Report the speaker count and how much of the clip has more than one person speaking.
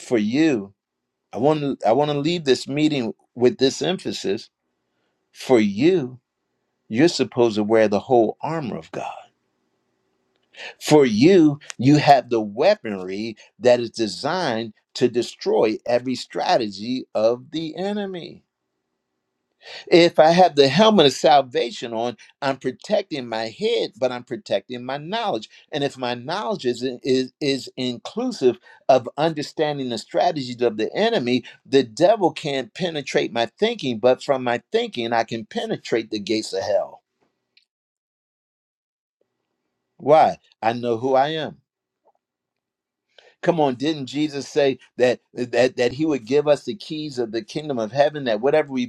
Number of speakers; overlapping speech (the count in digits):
1, no overlap